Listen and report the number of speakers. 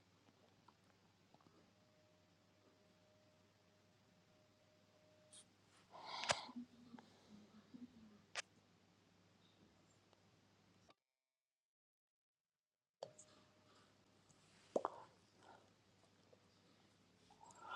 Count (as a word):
zero